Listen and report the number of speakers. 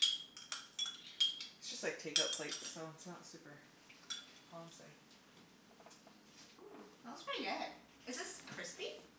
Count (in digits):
2